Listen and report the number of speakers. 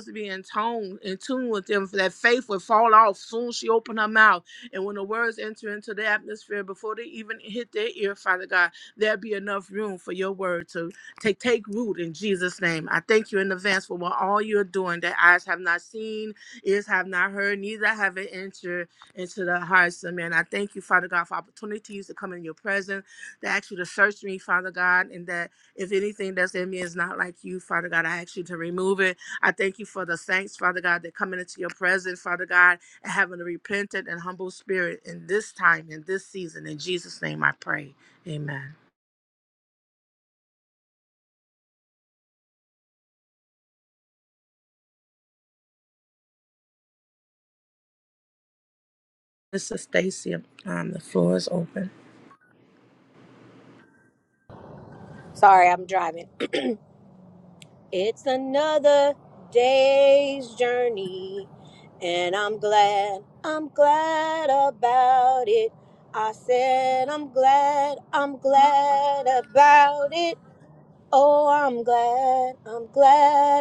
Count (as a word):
two